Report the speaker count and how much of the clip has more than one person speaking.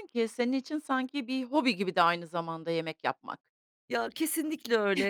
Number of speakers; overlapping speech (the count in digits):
2, no overlap